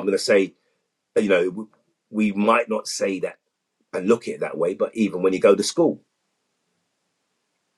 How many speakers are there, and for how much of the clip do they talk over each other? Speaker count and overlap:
1, no overlap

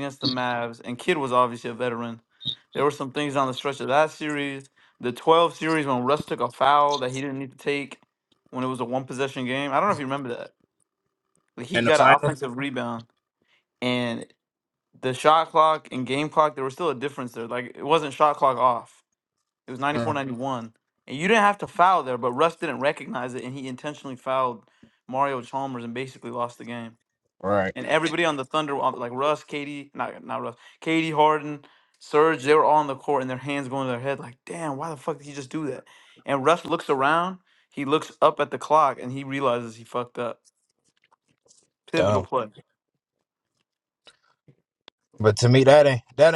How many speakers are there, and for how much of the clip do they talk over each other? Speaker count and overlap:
2, about 2%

